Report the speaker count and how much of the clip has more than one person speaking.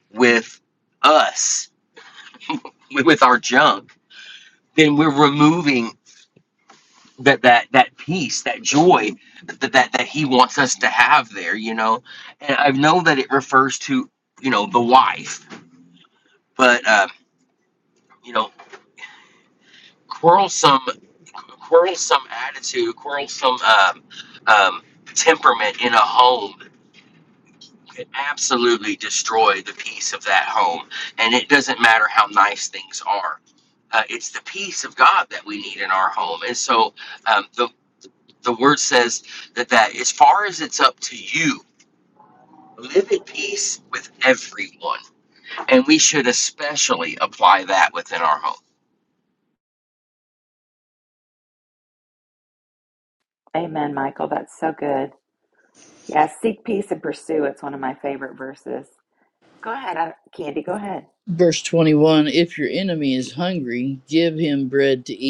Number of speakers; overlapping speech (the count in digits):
3, no overlap